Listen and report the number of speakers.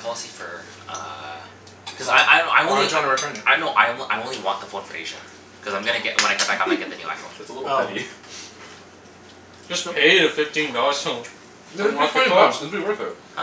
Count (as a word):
four